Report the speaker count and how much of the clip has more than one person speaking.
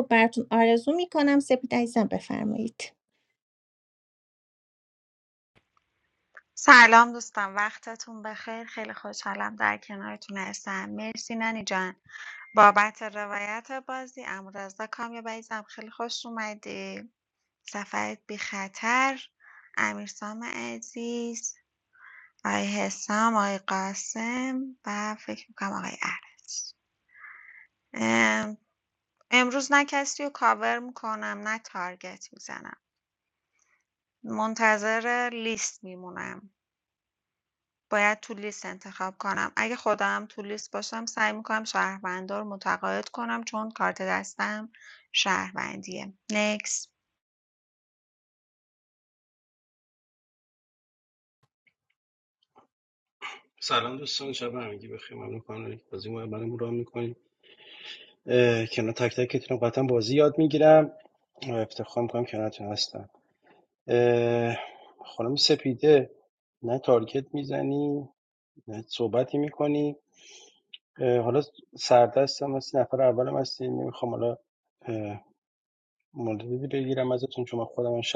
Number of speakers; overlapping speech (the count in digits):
3, no overlap